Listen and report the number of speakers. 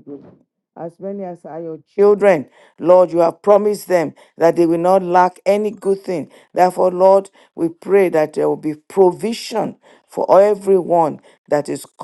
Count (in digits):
1